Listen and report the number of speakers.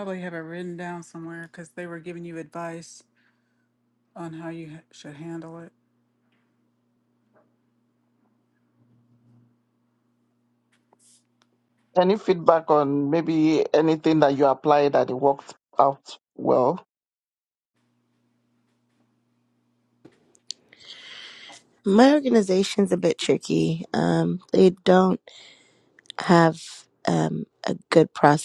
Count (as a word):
three